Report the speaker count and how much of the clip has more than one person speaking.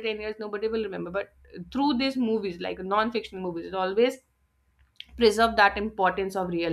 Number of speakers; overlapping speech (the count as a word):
one, no overlap